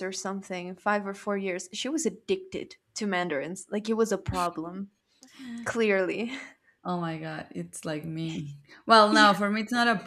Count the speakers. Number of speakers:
2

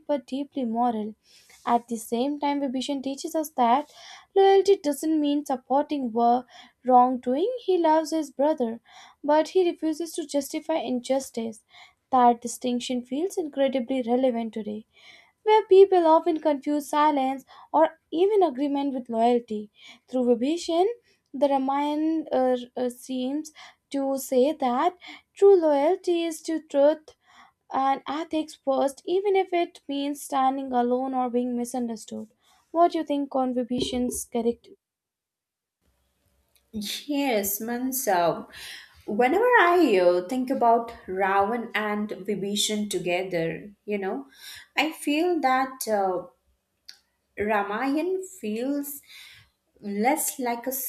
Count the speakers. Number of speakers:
2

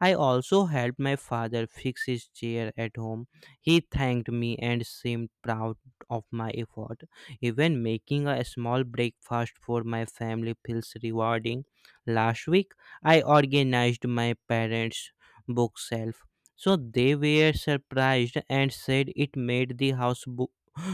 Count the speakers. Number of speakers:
1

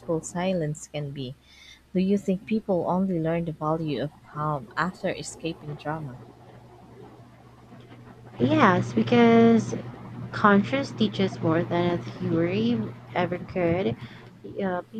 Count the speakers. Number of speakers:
2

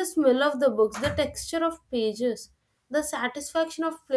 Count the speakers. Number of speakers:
1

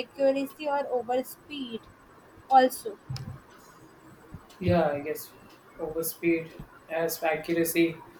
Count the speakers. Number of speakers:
2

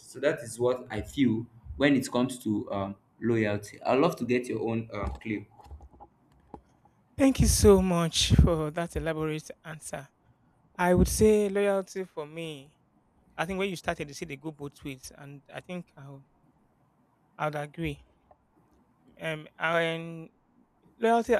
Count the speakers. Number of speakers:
2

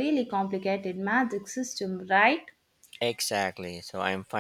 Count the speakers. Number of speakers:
2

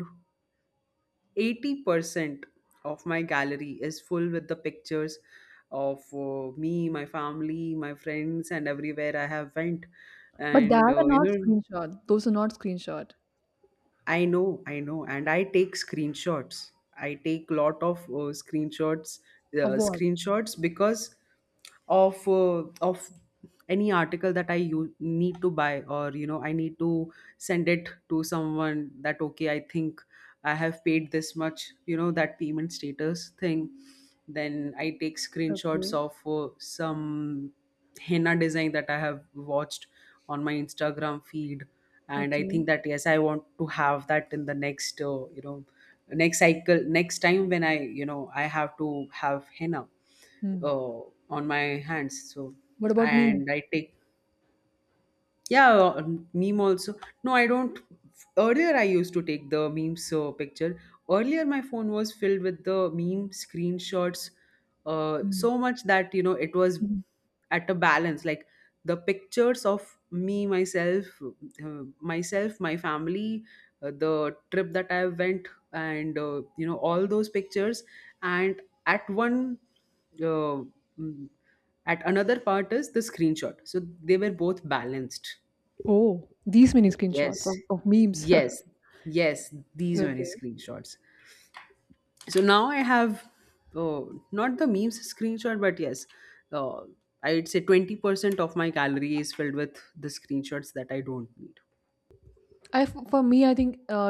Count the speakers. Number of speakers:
2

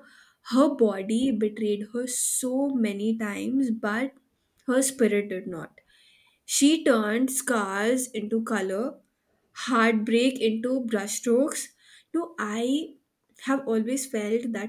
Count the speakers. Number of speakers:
1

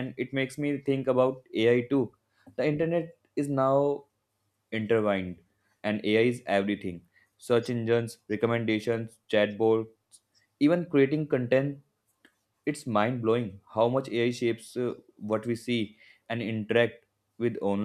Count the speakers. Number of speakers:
1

